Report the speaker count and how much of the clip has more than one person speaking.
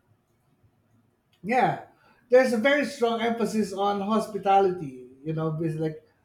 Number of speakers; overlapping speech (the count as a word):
one, no overlap